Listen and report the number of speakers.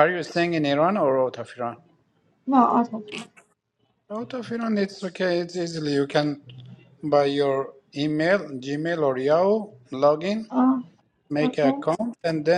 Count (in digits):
2